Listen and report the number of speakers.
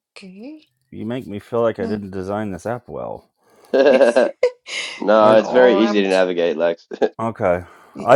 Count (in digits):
3